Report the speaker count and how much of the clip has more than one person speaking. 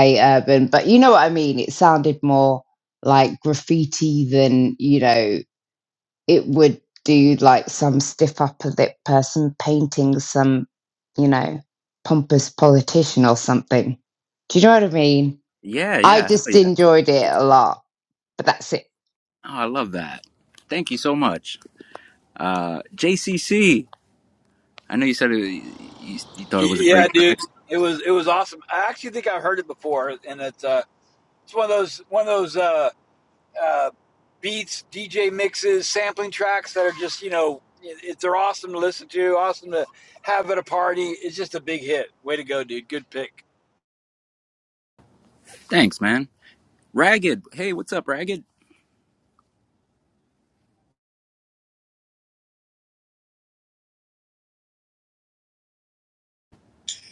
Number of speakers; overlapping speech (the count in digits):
3, about 2%